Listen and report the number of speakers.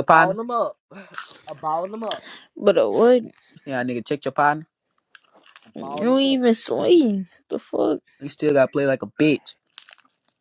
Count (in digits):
3